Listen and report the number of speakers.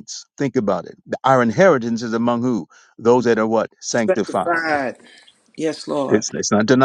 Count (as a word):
two